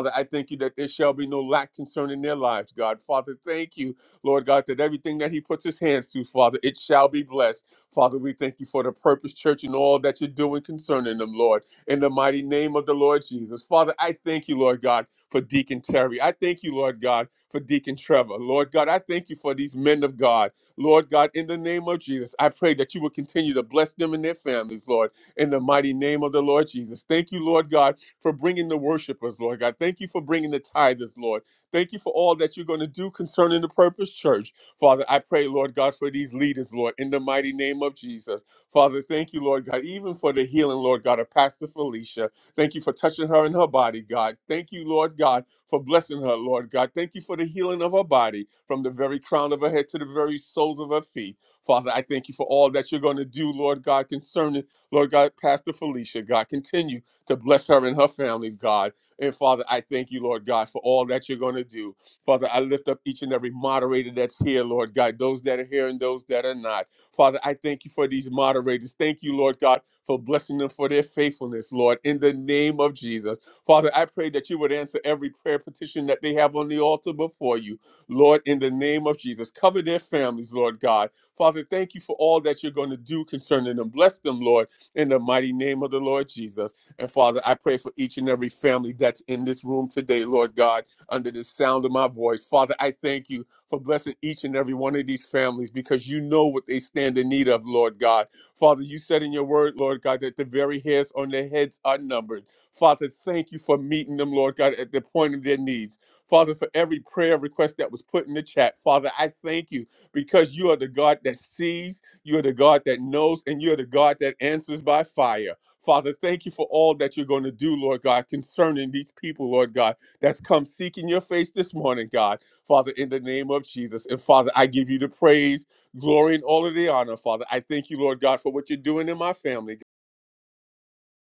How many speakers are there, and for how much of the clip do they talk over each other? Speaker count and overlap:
1, no overlap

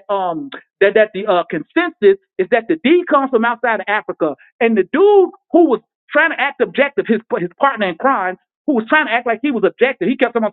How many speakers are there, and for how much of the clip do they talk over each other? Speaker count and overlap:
1, no overlap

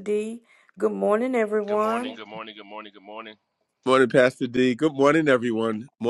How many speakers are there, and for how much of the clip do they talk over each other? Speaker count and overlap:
3, about 9%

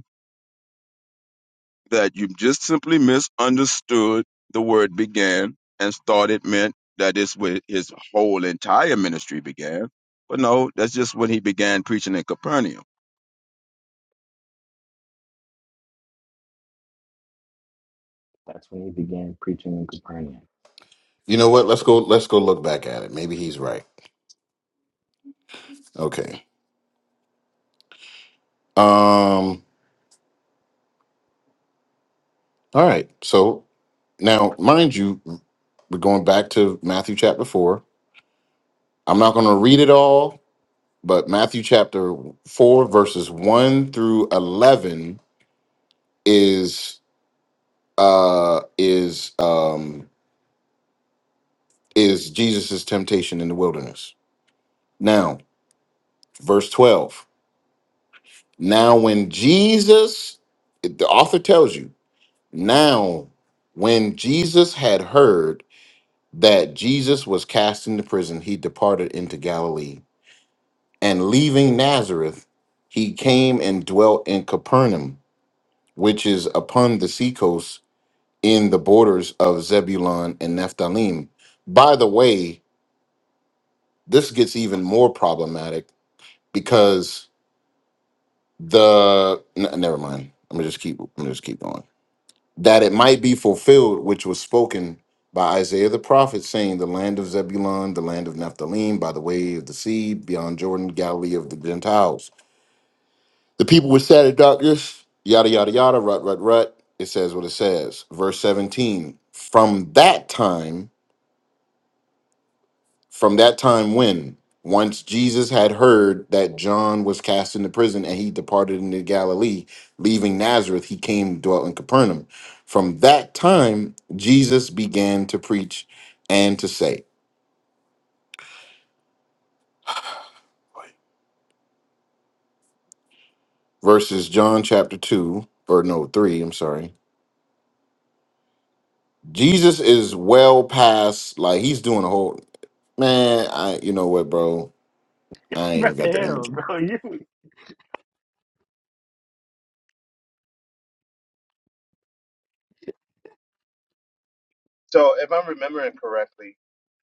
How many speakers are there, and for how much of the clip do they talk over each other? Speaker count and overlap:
4, about 1%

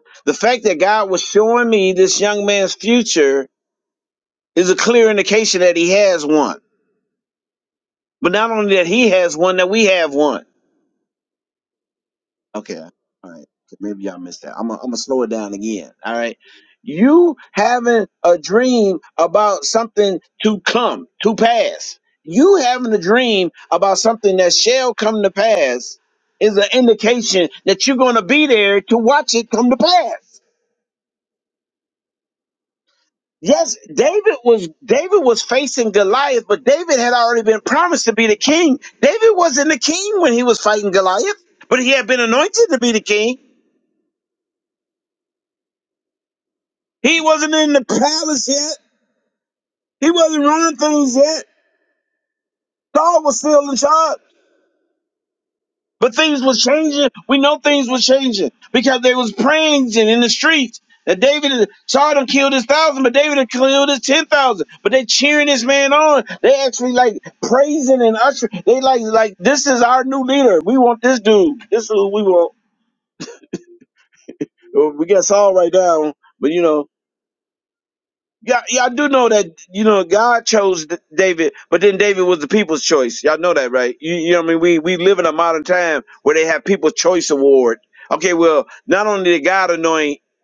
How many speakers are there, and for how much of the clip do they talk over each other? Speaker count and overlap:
1, no overlap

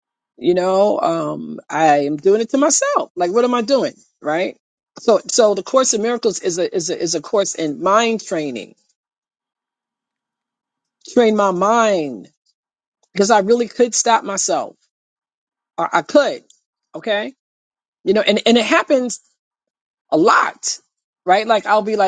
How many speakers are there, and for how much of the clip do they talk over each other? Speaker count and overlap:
1, no overlap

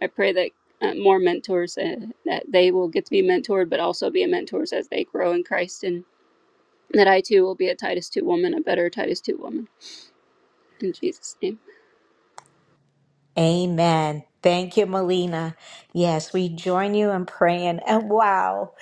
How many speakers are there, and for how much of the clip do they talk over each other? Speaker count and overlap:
2, no overlap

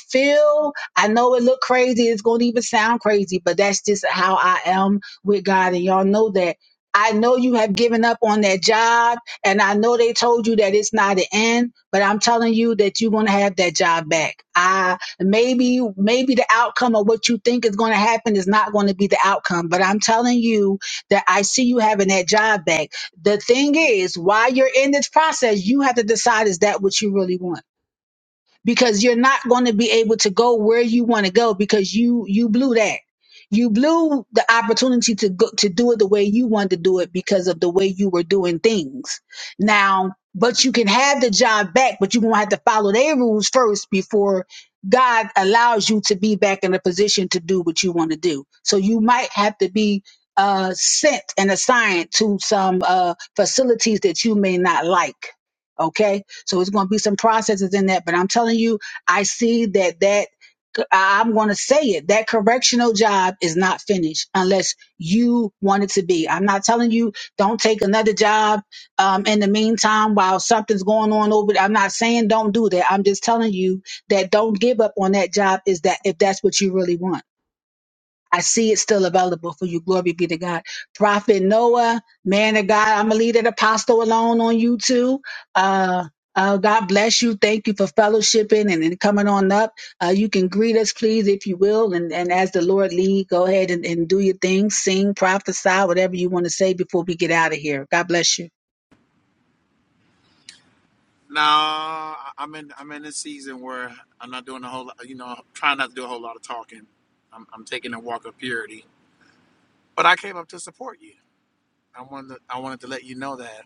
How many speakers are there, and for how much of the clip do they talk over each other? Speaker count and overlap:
2, no overlap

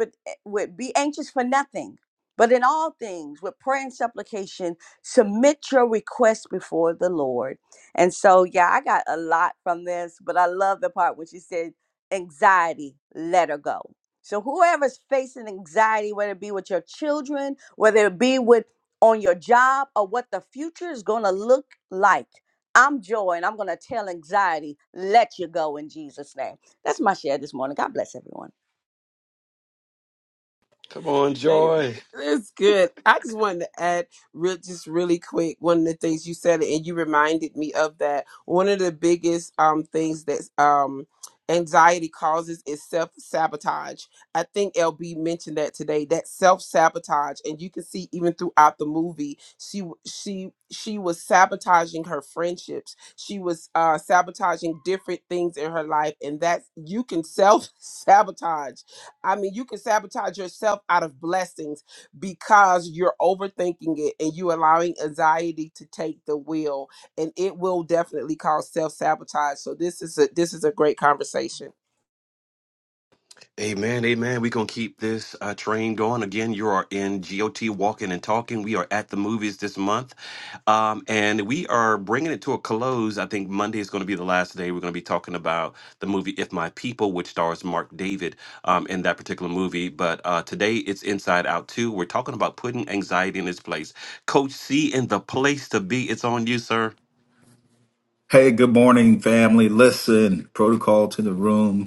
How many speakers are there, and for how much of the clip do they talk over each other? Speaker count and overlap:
4, under 1%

